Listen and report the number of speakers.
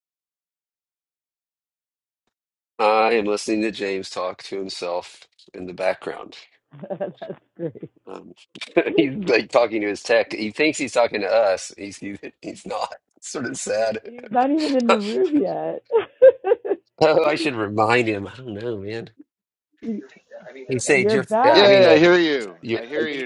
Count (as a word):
three